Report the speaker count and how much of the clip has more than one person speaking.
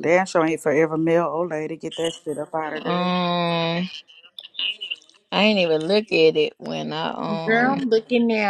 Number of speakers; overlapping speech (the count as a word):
three, about 10%